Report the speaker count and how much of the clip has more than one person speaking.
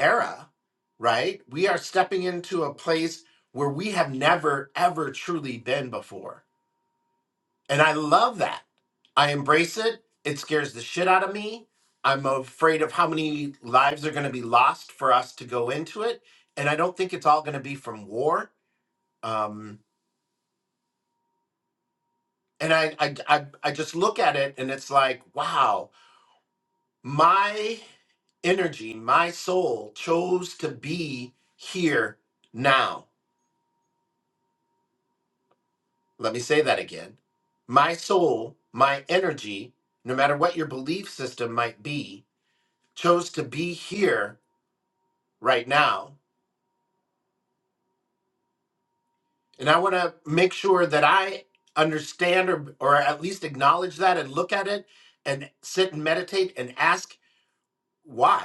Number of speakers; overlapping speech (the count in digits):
1, no overlap